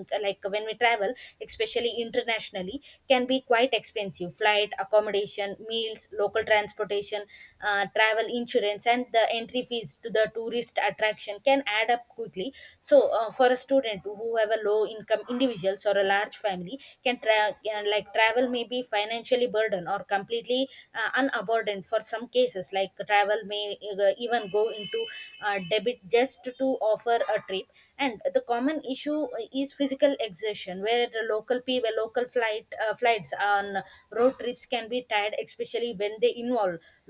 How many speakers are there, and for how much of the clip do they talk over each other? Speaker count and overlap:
1, no overlap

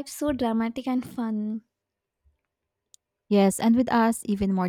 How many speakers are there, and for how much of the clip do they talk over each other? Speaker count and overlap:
2, no overlap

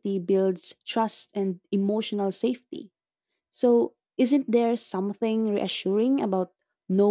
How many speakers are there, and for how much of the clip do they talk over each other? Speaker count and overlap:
1, no overlap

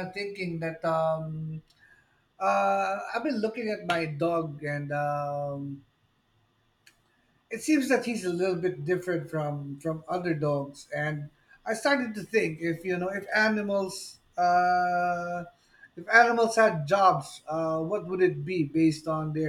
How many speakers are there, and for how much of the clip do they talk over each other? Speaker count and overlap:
1, no overlap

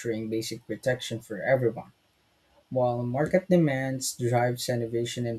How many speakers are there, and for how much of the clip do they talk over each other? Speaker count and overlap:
1, no overlap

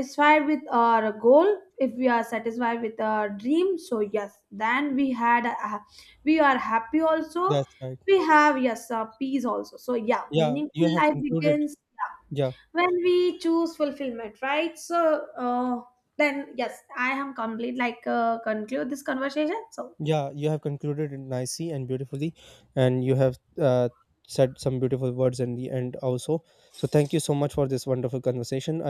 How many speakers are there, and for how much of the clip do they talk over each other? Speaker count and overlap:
2, about 5%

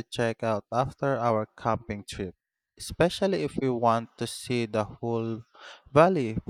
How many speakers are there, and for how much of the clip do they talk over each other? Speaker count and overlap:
1, no overlap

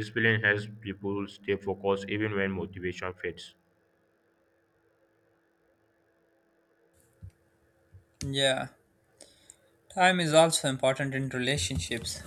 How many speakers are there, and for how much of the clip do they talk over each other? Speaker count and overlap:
2, no overlap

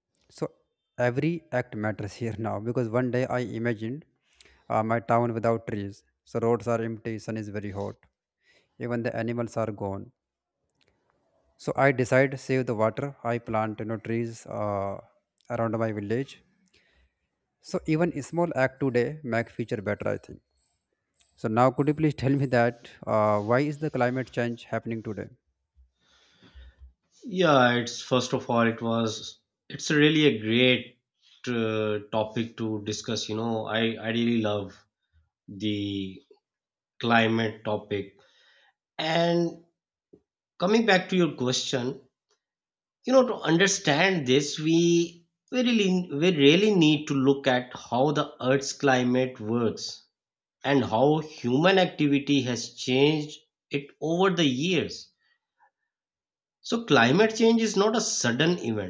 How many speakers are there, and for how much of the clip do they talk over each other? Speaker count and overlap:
2, no overlap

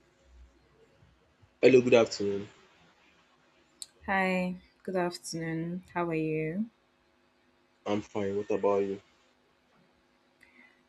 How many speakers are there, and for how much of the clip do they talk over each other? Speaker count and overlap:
2, no overlap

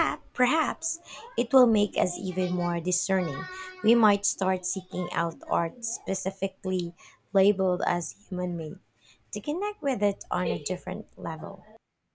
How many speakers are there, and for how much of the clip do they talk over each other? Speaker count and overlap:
1, no overlap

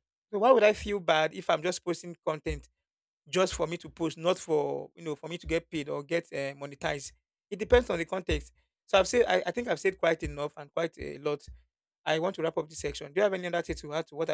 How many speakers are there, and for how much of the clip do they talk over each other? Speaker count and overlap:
1, no overlap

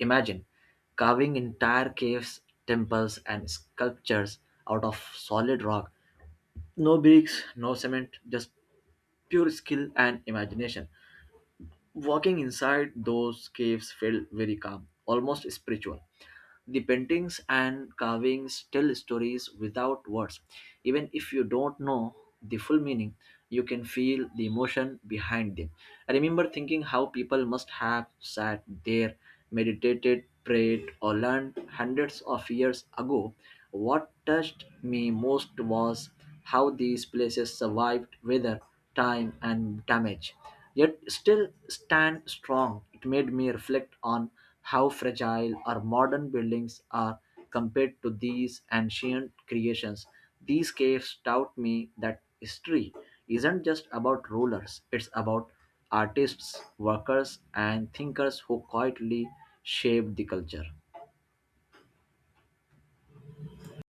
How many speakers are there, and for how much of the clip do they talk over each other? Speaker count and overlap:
1, no overlap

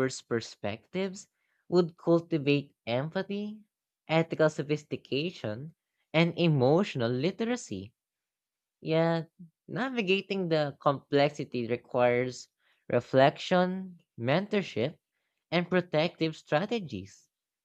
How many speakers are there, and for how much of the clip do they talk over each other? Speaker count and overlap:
1, no overlap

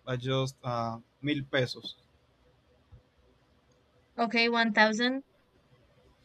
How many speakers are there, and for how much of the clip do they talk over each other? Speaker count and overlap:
2, no overlap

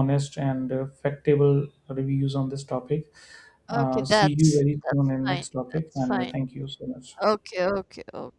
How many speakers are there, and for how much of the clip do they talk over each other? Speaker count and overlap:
2, about 27%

